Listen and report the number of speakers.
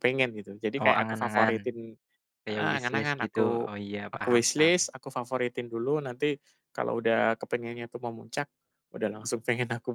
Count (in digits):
2